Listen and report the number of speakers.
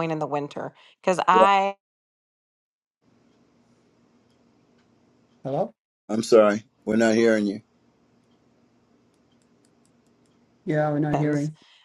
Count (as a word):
three